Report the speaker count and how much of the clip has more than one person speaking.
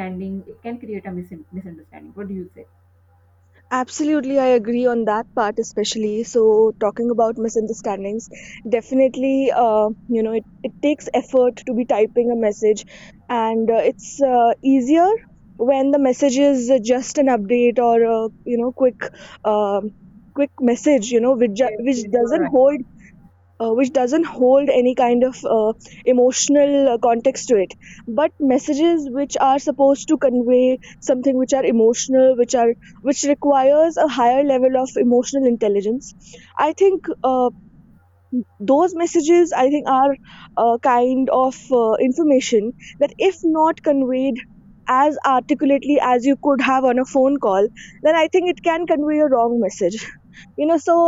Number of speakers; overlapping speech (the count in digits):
2, about 2%